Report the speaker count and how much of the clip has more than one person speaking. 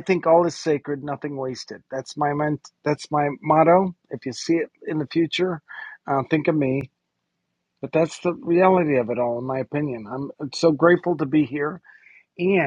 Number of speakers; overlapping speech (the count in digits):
1, no overlap